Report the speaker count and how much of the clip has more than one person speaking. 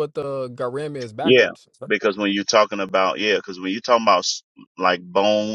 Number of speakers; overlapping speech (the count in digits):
2, about 5%